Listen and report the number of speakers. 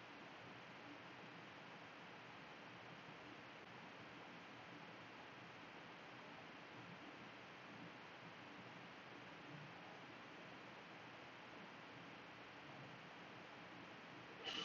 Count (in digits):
0